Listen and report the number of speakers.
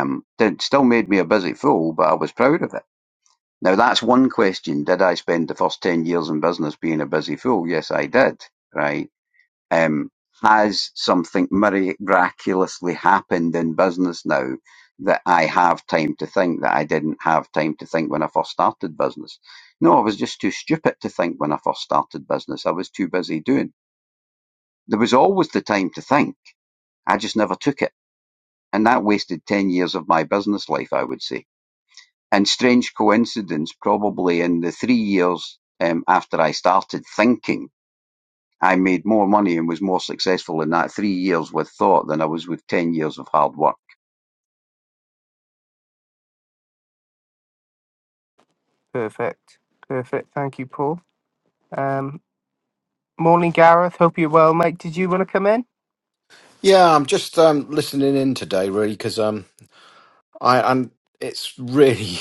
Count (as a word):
three